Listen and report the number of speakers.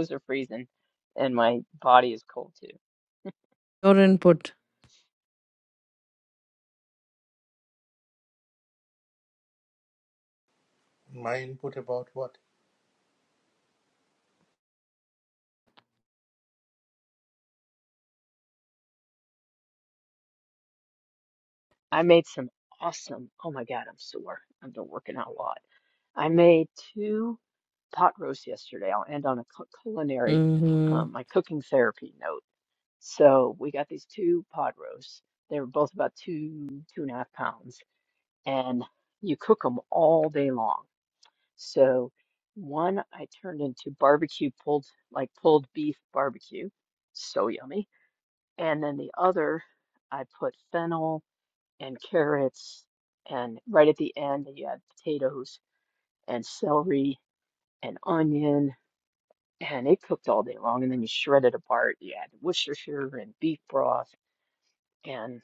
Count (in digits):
3